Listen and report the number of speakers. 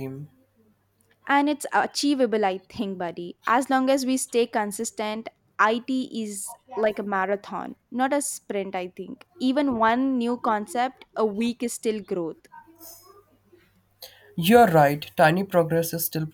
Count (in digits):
2